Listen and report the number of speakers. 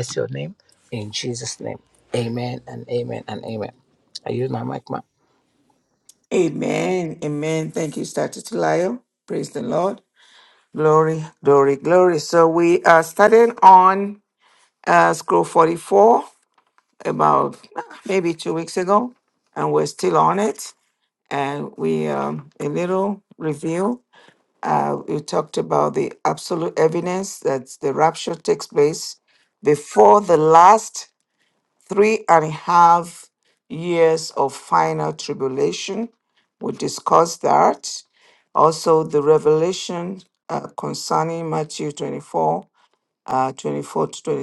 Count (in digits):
2